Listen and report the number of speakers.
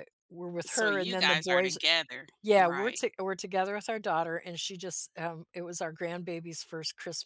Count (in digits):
2